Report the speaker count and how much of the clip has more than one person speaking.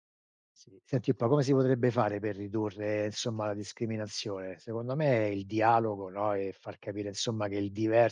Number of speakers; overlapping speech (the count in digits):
1, no overlap